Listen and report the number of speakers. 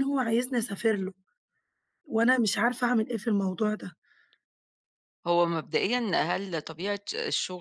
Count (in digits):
2